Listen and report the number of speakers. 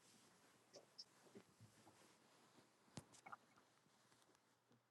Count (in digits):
0